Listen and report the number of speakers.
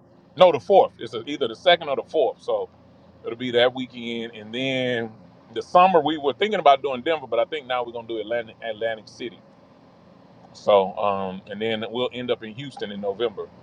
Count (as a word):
one